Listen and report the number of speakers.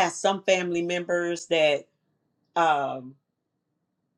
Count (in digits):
1